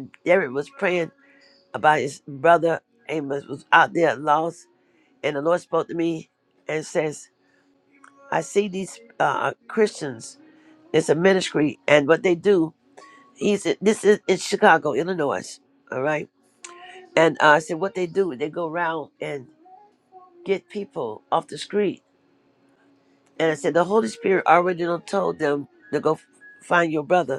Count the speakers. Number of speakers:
1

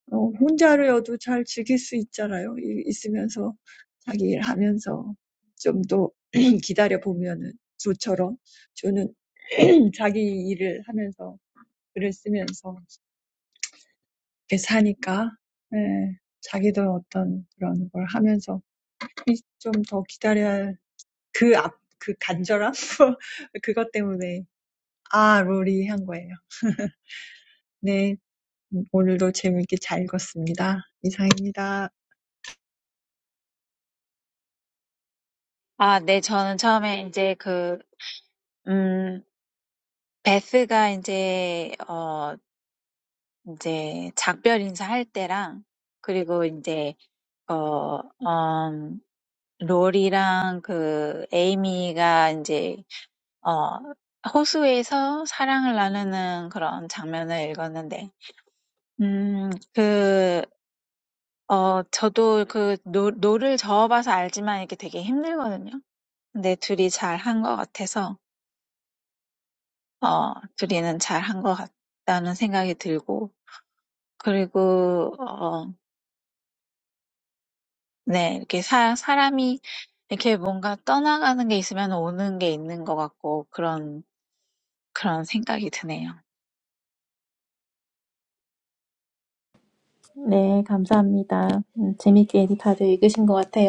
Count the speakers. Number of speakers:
3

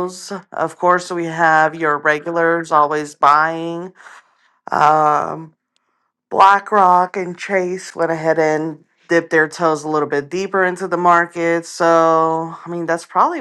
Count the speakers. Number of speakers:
1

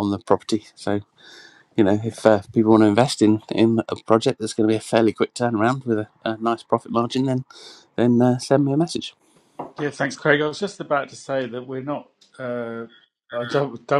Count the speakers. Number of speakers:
2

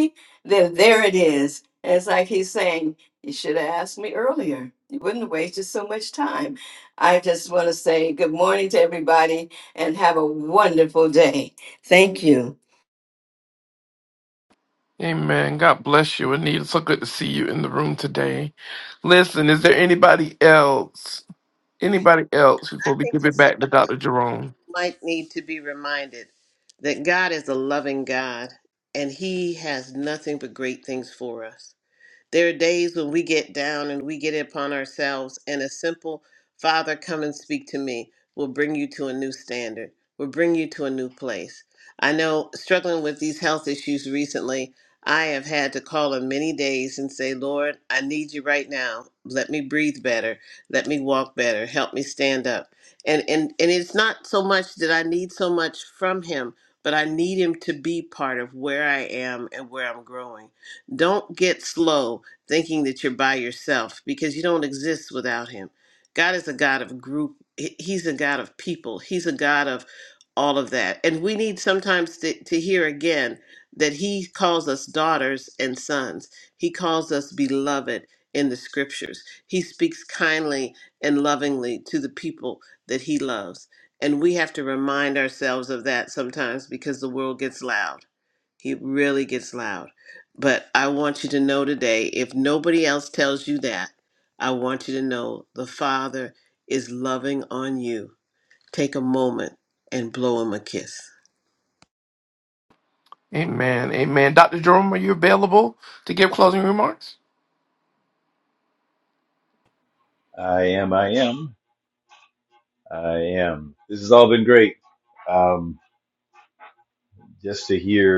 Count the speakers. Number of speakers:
4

